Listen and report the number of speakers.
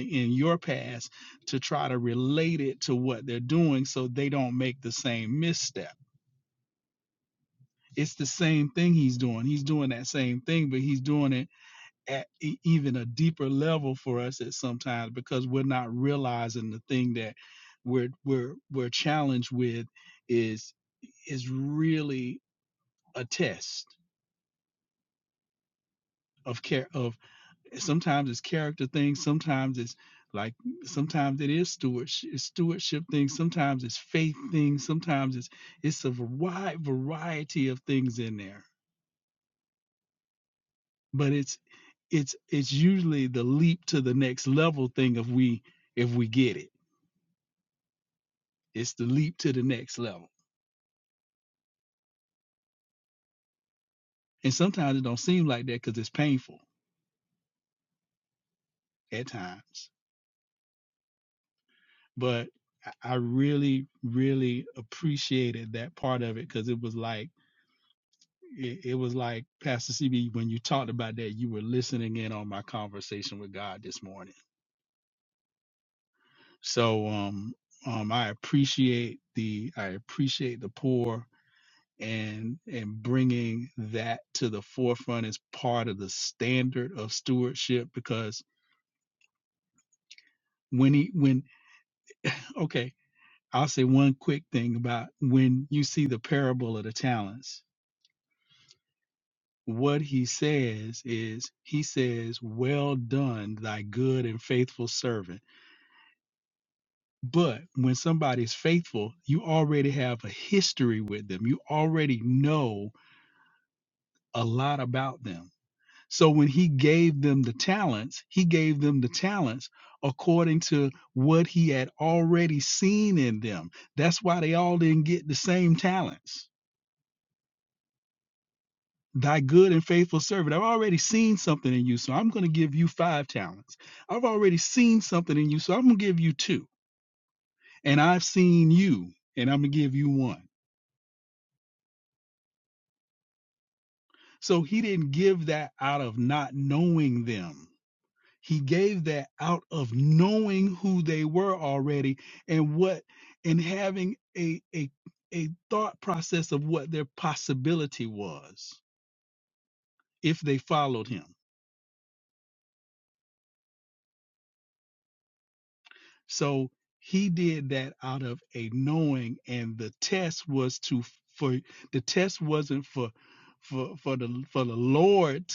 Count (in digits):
1